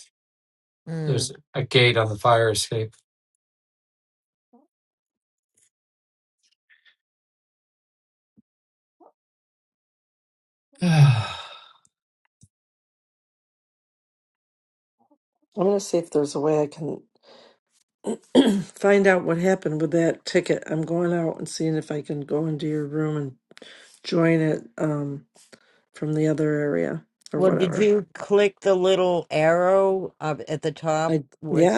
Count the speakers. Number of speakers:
three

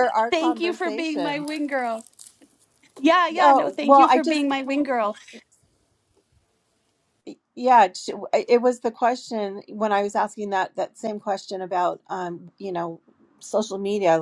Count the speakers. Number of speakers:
two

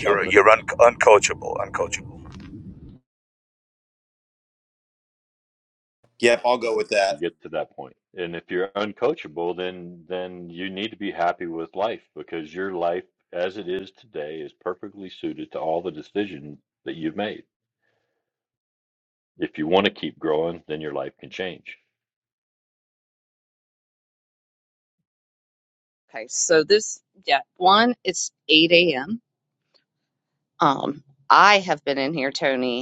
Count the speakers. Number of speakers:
four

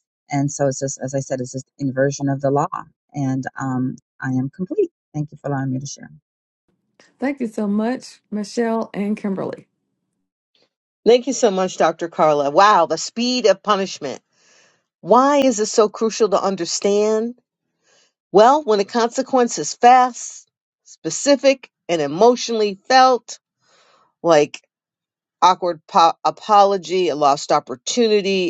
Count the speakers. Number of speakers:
three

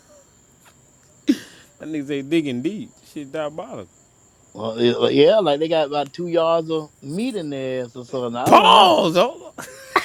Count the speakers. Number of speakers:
two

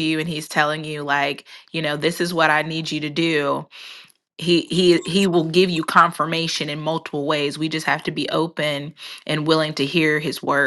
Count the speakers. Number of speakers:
one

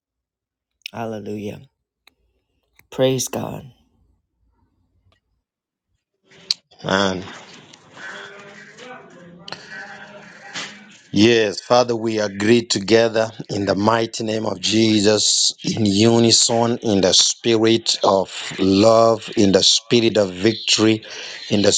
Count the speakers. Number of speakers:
two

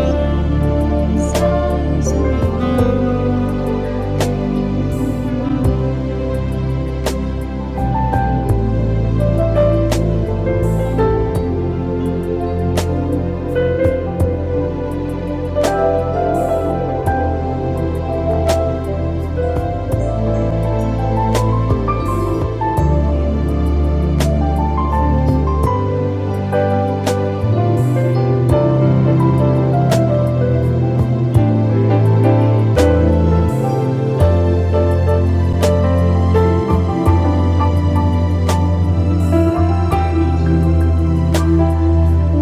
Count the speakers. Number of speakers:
zero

